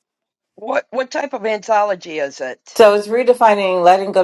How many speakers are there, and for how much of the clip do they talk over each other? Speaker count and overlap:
two, no overlap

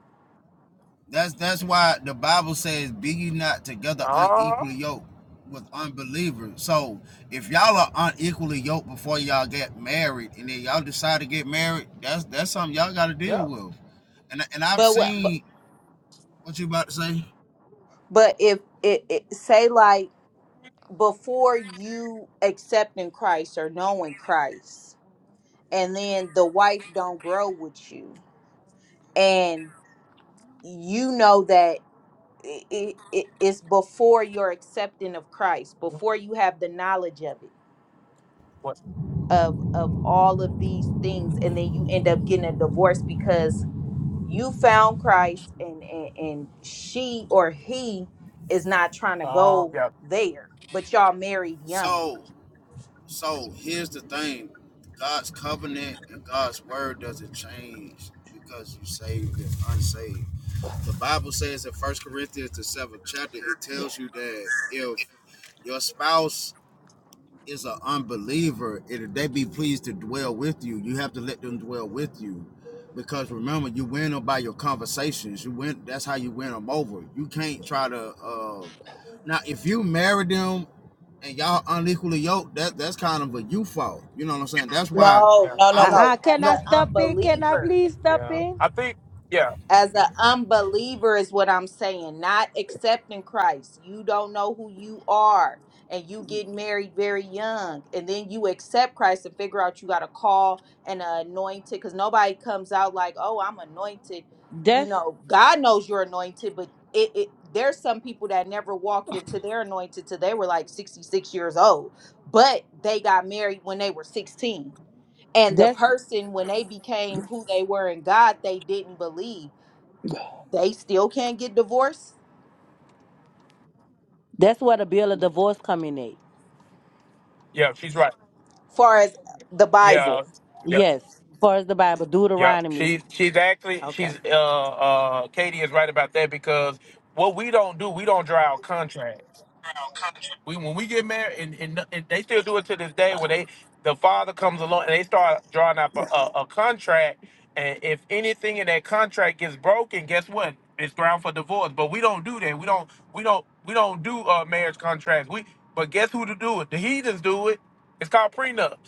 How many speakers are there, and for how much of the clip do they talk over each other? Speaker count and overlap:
four, about 4%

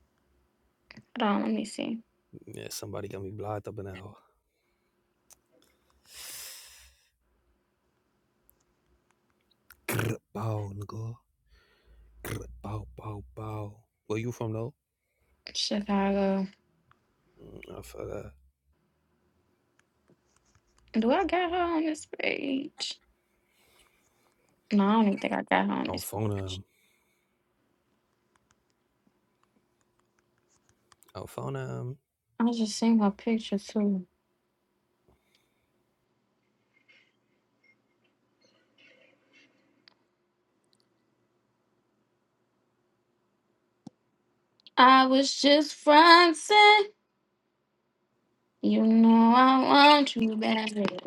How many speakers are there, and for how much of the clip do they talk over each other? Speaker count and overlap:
two, about 1%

